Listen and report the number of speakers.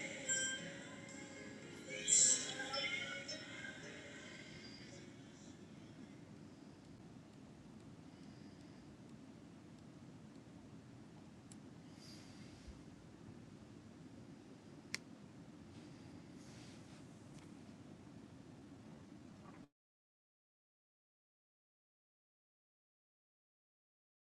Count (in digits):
0